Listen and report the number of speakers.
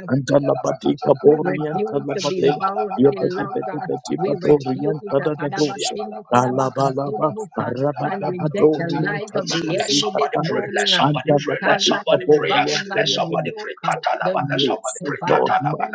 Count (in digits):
3